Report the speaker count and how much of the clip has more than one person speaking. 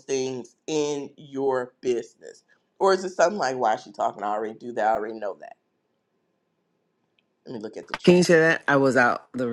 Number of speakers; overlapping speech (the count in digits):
2, about 2%